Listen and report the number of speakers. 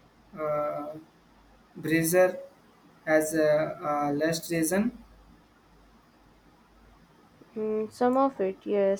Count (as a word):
two